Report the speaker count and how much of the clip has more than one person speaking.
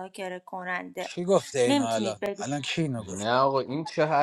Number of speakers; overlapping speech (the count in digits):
3, about 25%